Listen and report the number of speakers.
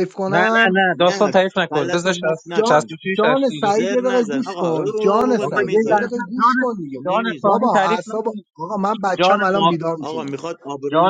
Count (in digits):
3